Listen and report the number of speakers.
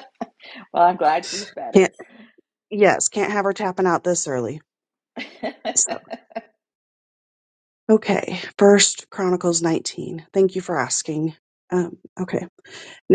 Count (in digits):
2